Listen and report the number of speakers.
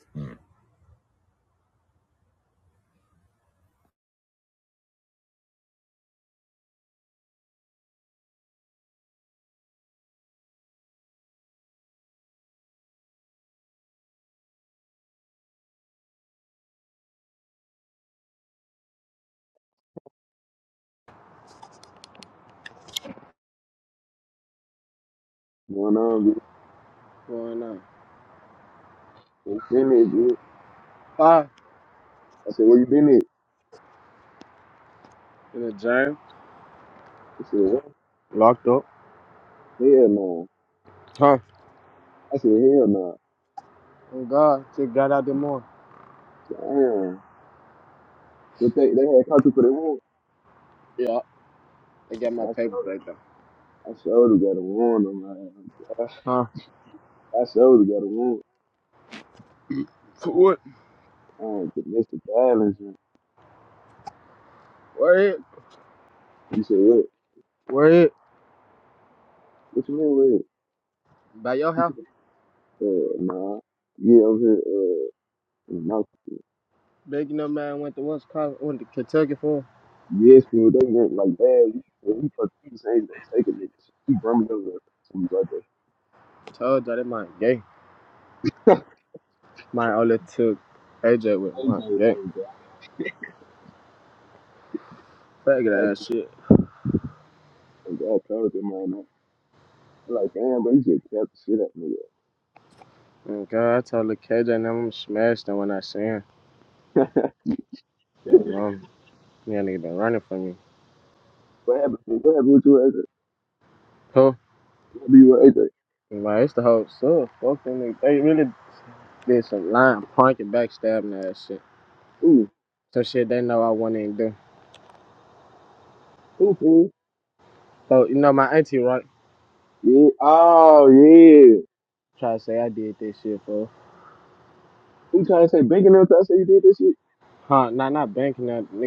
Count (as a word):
two